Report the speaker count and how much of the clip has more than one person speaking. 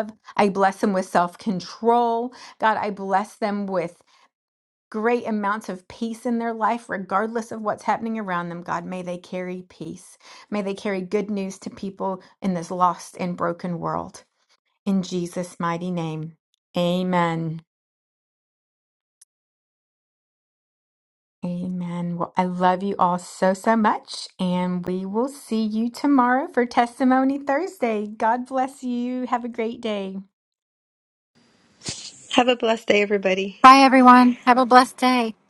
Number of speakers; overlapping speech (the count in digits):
3, no overlap